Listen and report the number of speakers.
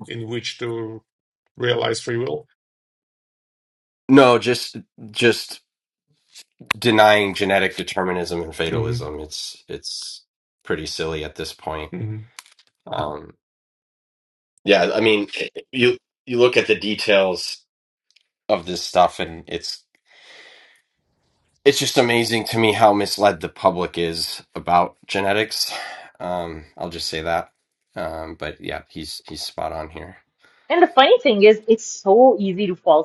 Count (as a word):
three